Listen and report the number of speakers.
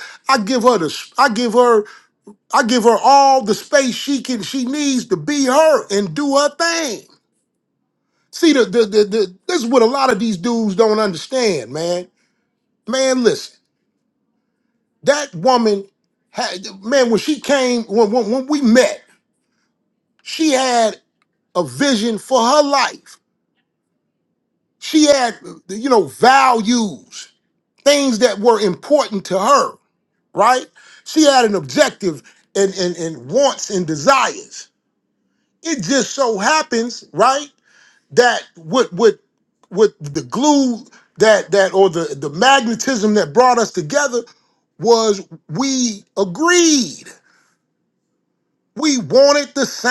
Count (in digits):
1